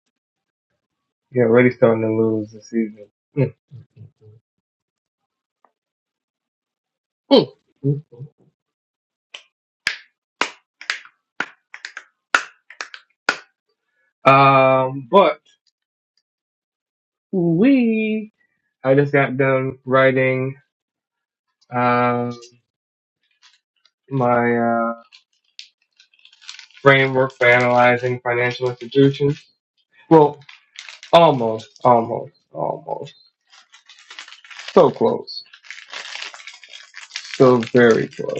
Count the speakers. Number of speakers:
1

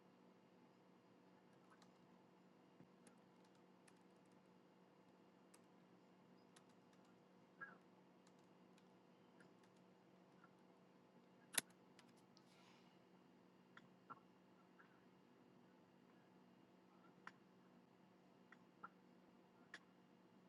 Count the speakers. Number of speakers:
0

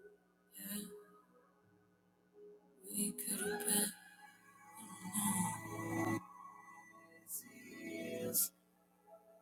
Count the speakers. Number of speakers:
0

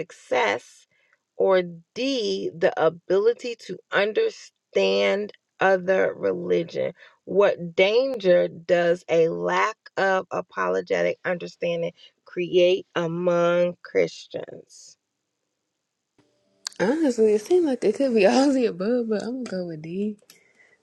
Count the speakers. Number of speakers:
2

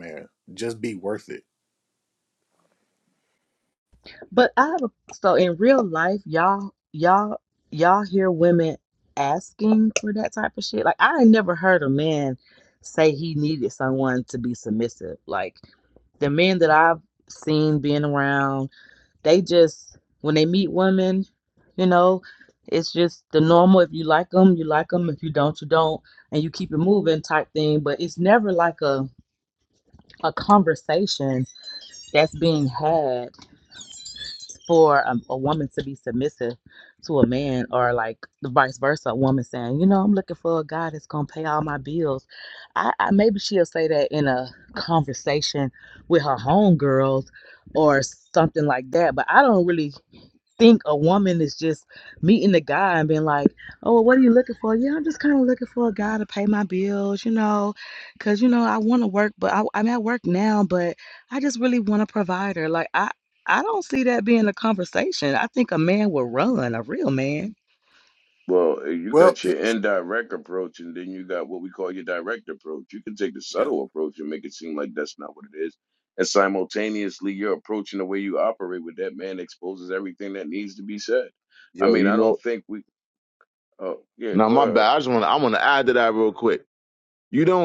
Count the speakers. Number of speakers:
4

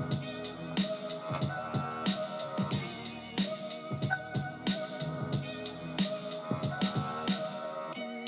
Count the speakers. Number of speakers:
0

